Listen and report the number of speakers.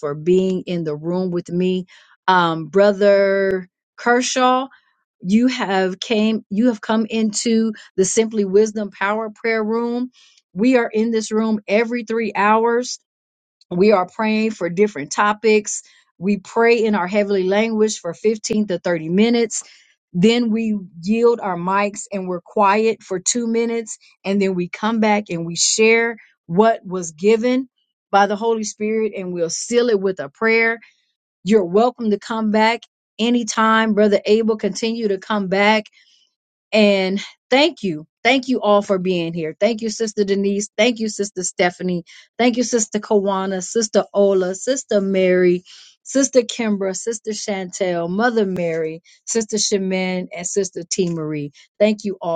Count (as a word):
one